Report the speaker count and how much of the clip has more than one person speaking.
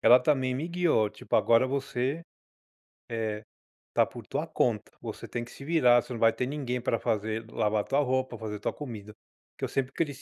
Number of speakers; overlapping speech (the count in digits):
1, no overlap